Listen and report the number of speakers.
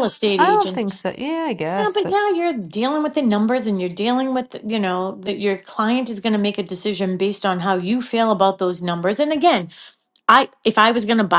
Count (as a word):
two